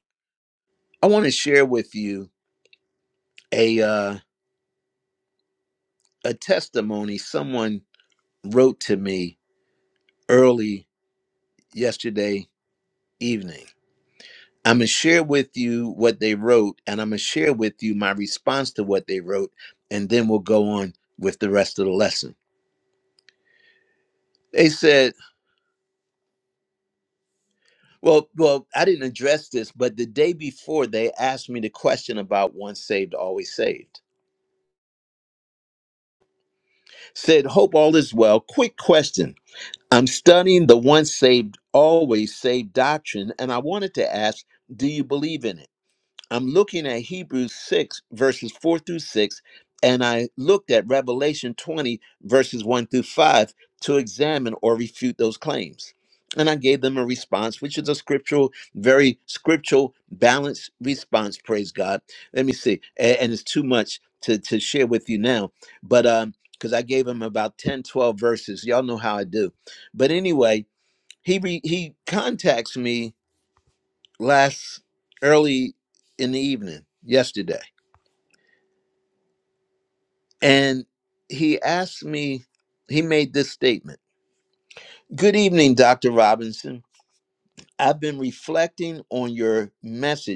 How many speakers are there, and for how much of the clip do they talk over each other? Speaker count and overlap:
1, no overlap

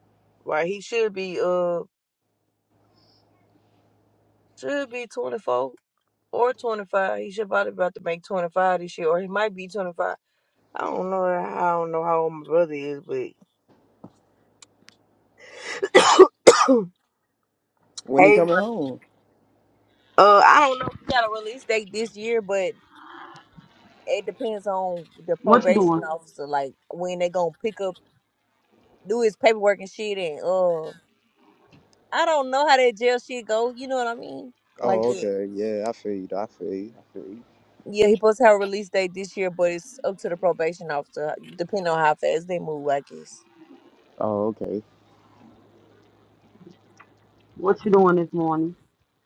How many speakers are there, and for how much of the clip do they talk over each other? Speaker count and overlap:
3, about 3%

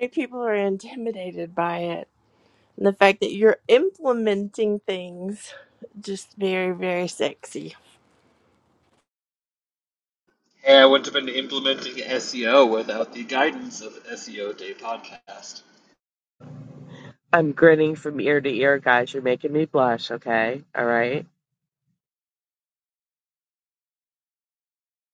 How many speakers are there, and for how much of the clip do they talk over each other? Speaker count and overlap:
3, no overlap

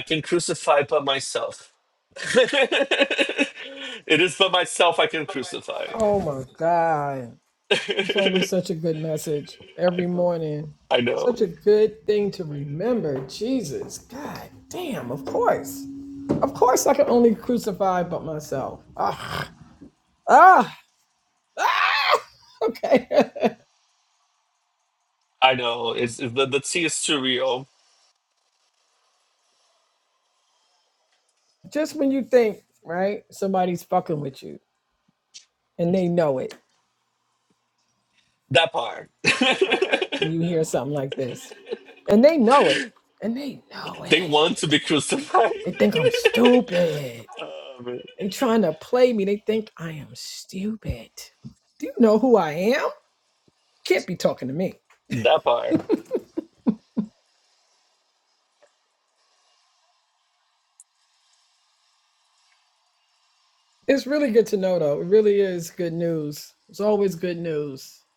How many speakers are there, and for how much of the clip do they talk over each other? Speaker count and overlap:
2, about 2%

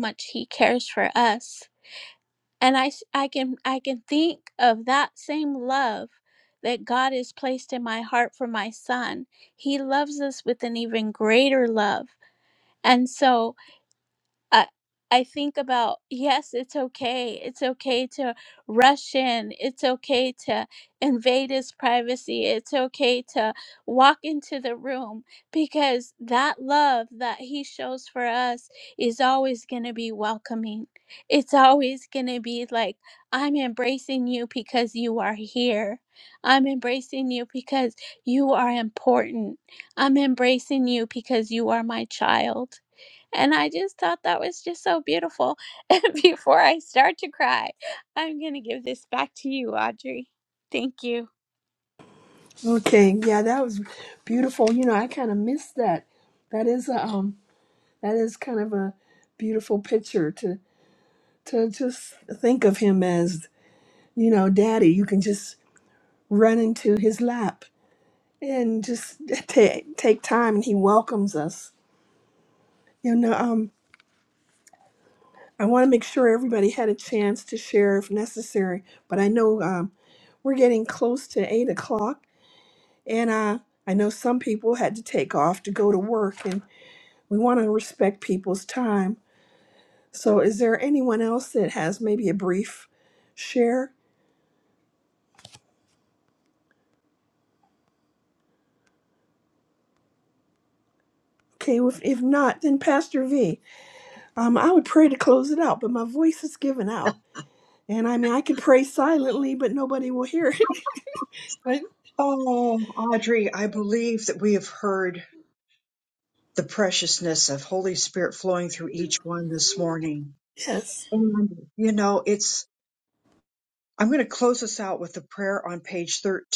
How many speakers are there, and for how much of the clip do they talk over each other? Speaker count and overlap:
3, no overlap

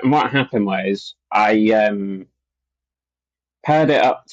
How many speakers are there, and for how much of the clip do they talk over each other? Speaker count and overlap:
1, no overlap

